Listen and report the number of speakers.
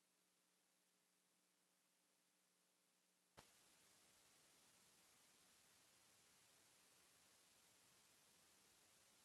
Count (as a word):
zero